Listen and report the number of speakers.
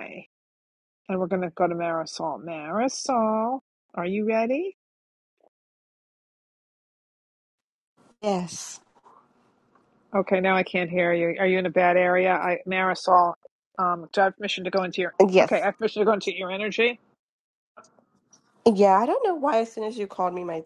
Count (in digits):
2